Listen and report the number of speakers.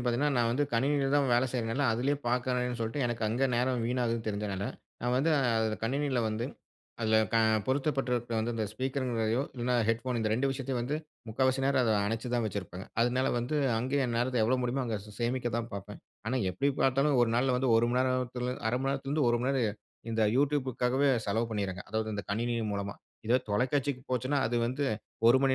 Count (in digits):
1